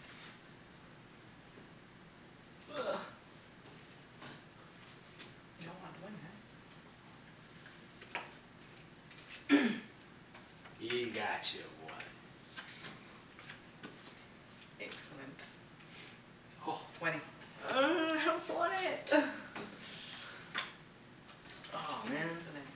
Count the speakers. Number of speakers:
4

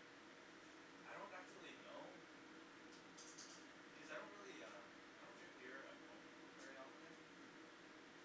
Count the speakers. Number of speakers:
1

